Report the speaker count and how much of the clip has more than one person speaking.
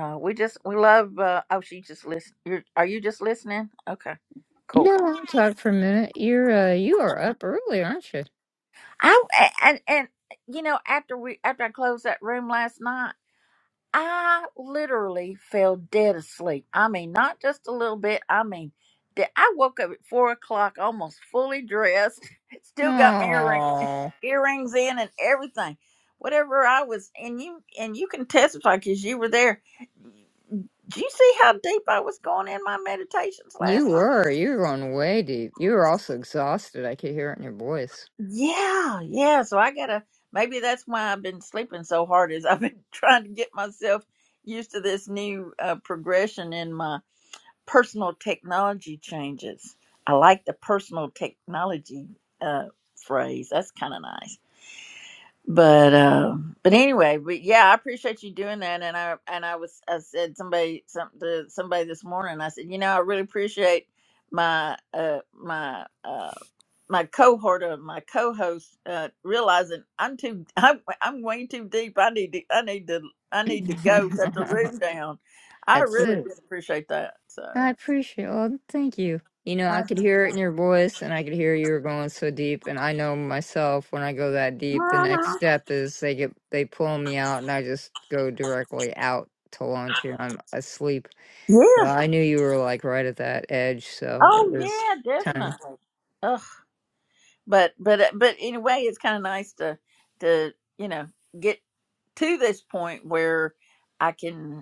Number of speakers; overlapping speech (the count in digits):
2, about 3%